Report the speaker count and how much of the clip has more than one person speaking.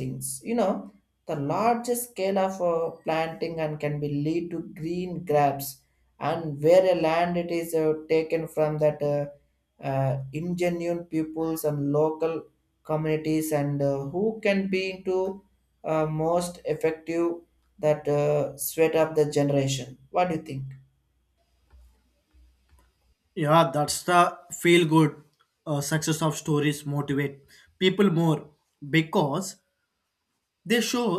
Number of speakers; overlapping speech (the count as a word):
two, no overlap